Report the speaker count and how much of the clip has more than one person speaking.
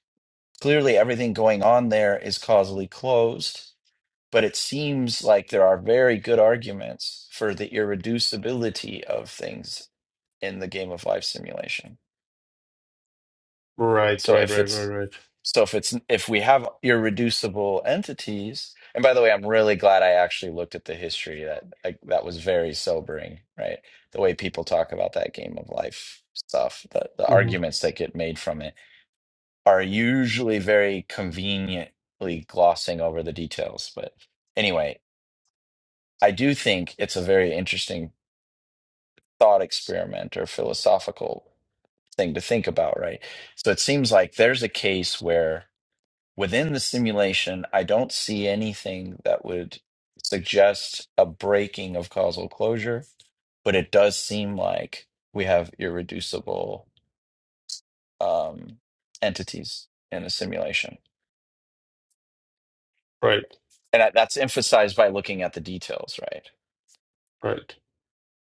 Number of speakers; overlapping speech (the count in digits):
2, about 1%